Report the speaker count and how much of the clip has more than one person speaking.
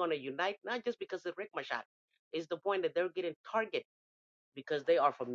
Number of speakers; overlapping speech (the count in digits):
1, no overlap